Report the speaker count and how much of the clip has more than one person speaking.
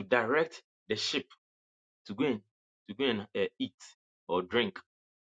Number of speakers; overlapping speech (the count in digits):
1, no overlap